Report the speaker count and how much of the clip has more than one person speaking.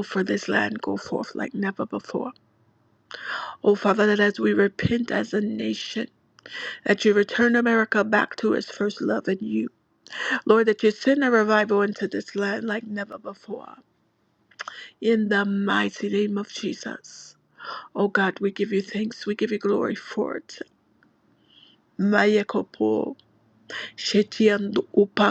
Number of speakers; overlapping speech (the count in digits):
1, no overlap